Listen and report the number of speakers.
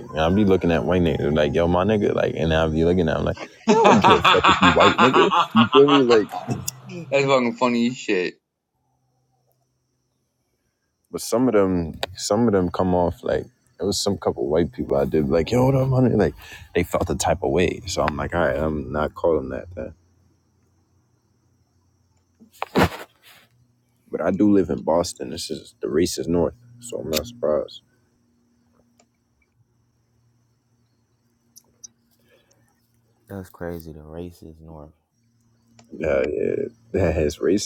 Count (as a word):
three